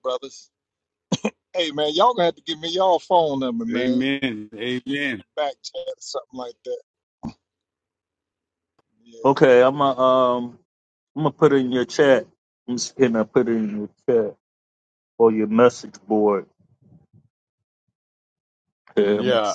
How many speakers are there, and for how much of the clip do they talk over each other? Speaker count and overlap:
three, about 4%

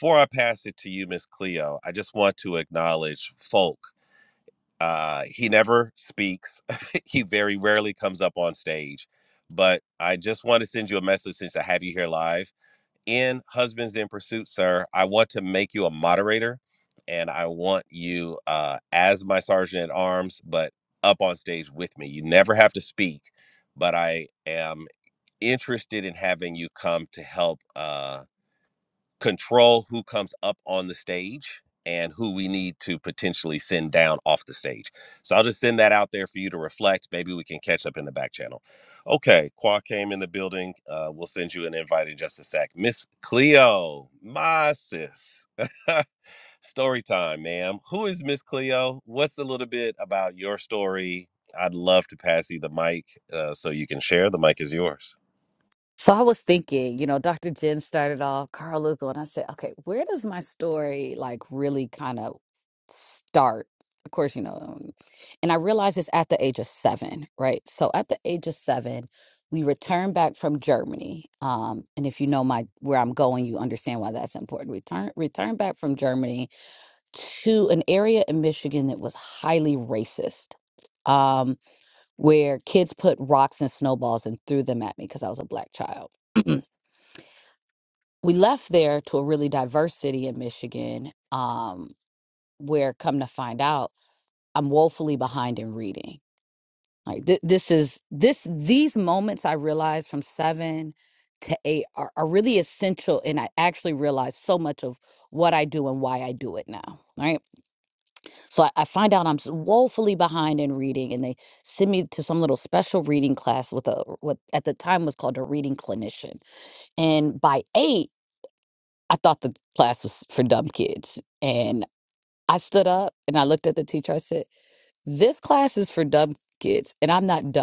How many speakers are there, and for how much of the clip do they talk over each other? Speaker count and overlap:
two, no overlap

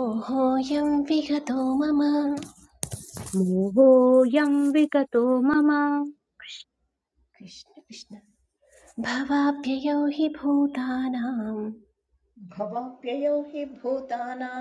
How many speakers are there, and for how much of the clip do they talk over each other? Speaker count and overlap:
three, no overlap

